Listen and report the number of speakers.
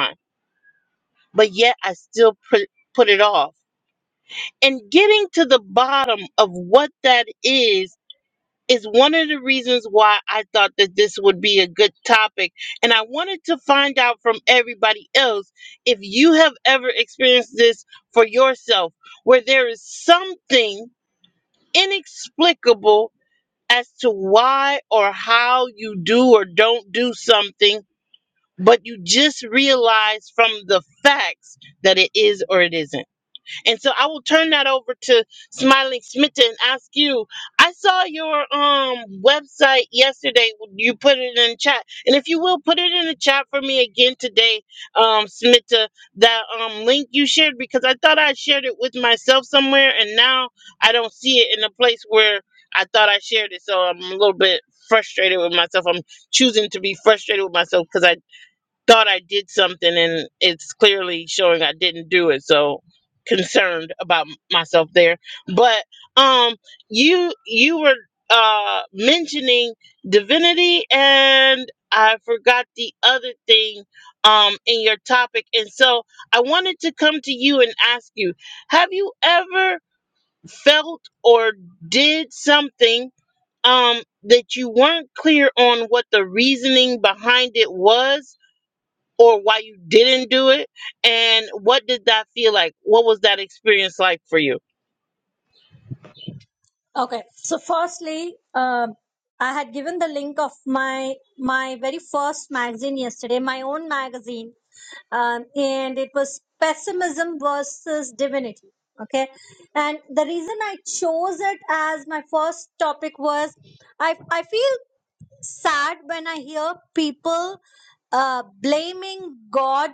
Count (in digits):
2